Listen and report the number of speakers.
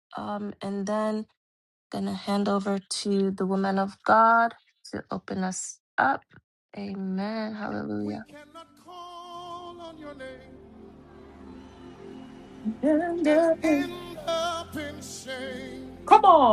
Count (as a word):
three